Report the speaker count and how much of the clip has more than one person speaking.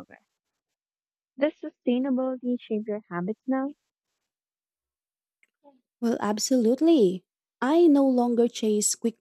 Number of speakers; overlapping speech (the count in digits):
2, no overlap